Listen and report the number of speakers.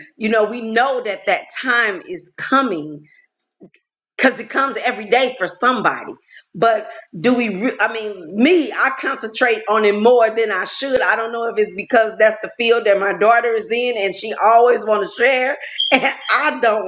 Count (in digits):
1